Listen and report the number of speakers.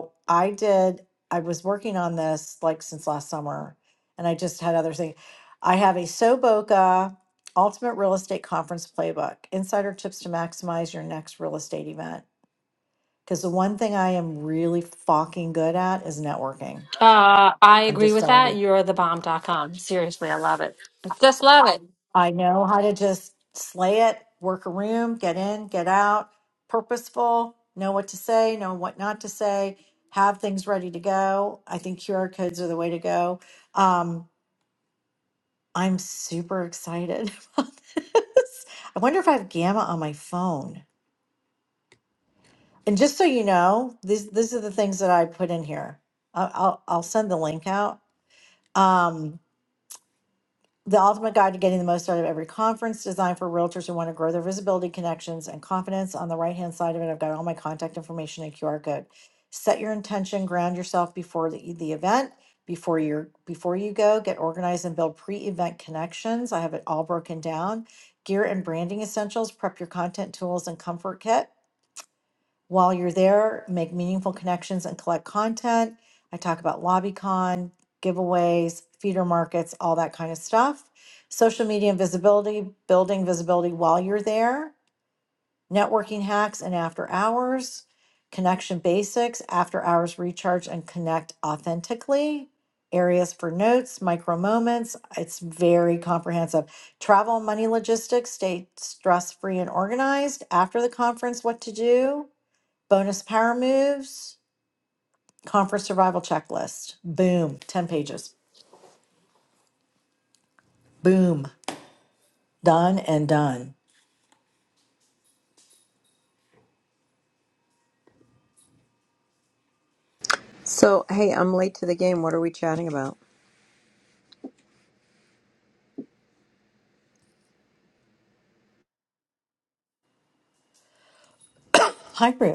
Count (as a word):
three